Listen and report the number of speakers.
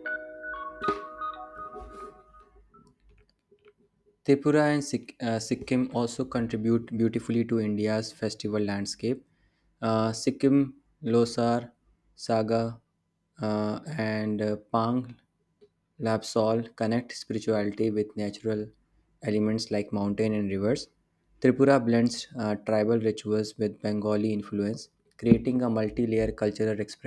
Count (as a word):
one